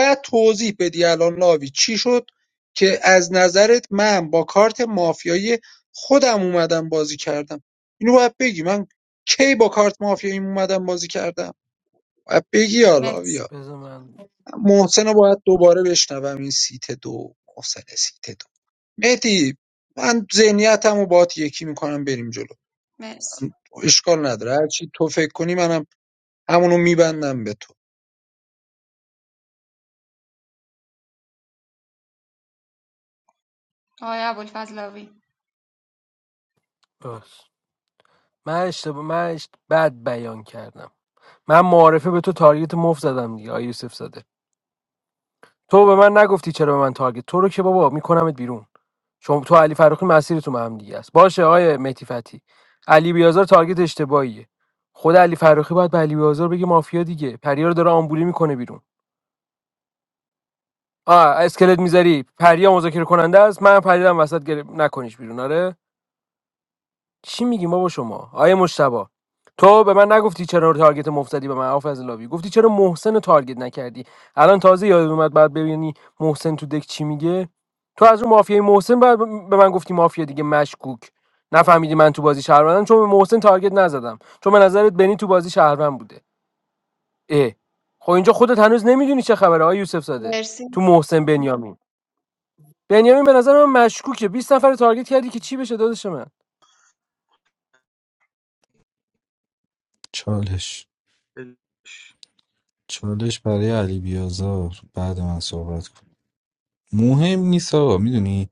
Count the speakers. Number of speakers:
4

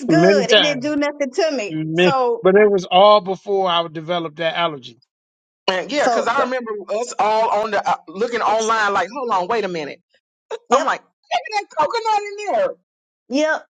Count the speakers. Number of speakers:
3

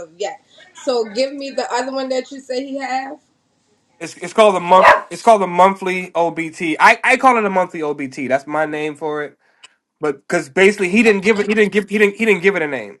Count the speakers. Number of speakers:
2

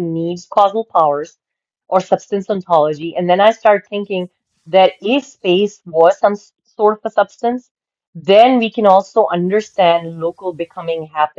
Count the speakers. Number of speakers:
1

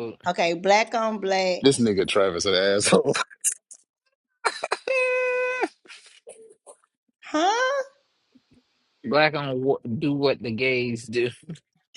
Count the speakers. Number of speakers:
3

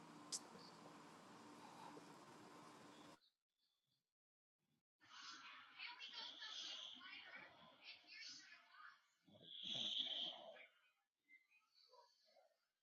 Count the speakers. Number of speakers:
0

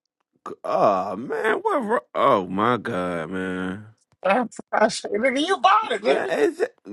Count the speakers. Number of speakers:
2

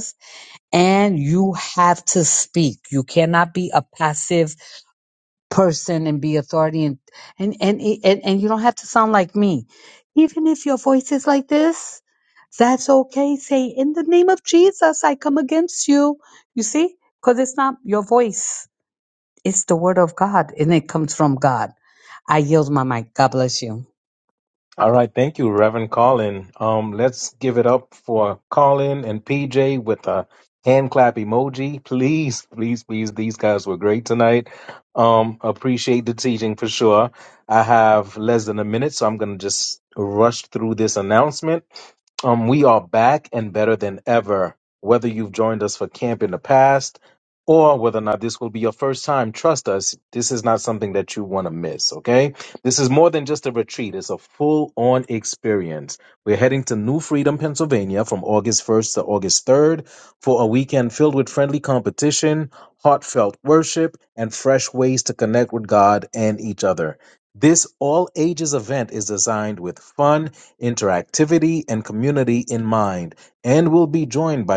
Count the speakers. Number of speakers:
2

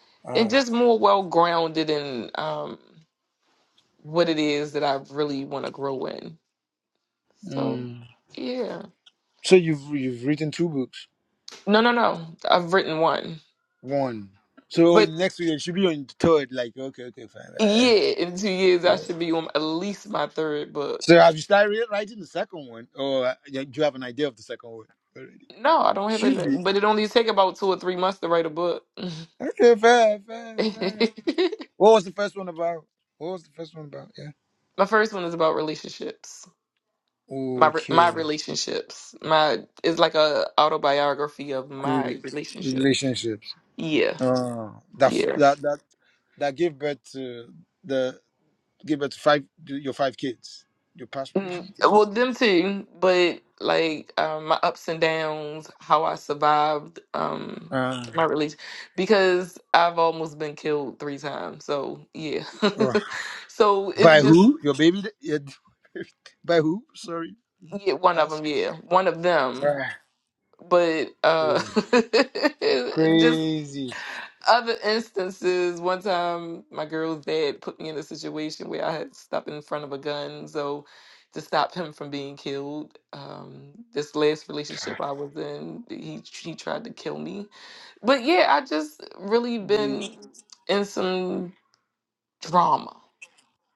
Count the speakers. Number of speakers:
2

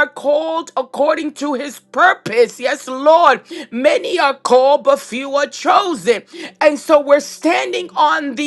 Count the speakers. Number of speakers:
1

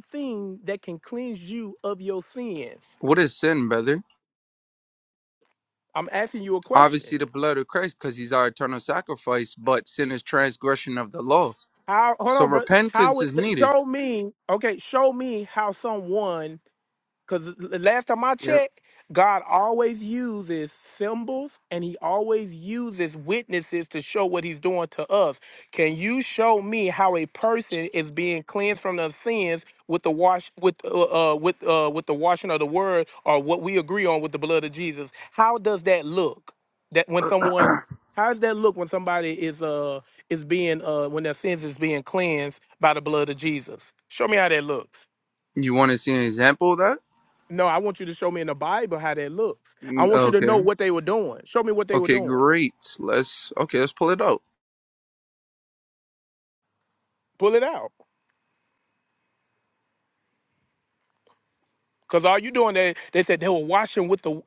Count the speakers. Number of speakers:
2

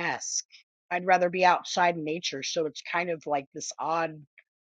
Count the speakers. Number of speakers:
1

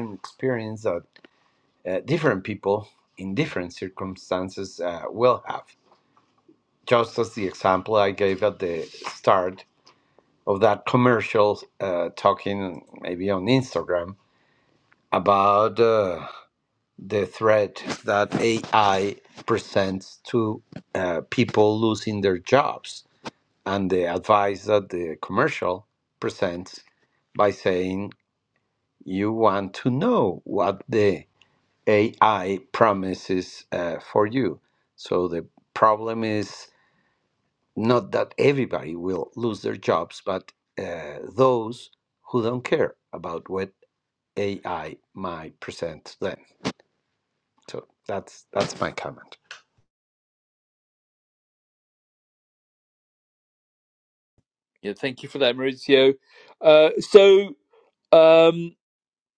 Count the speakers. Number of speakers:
2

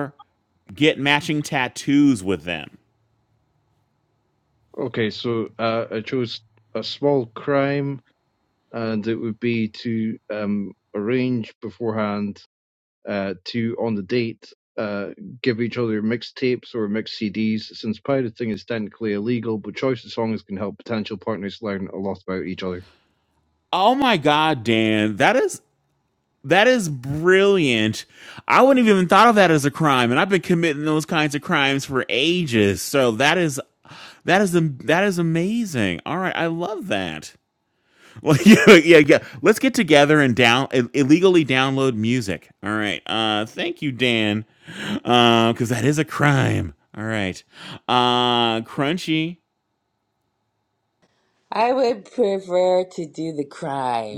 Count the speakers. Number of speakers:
3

